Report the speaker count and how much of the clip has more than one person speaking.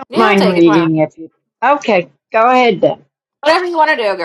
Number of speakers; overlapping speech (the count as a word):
two, about 18%